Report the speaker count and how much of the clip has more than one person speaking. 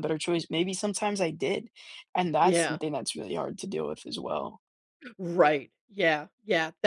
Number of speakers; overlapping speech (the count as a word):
two, about 5%